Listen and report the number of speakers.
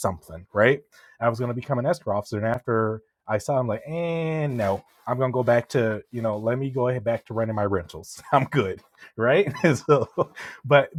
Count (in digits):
1